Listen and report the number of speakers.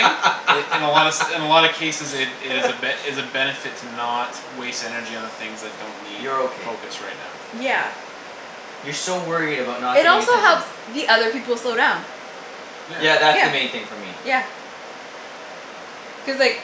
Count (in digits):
3